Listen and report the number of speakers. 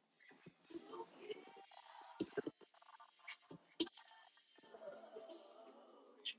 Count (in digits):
0